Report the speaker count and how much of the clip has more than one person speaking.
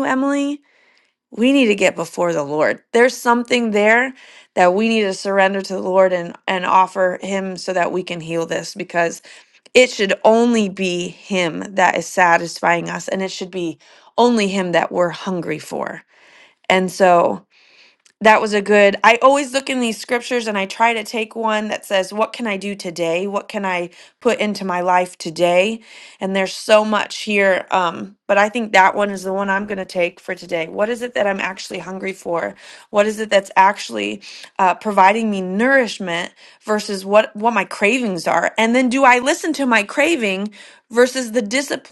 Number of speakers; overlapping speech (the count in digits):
1, no overlap